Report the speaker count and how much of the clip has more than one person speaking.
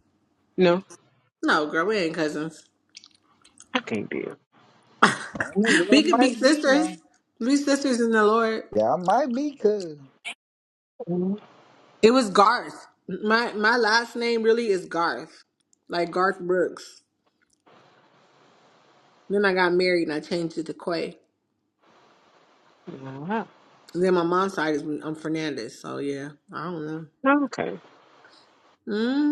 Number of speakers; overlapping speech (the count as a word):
three, about 4%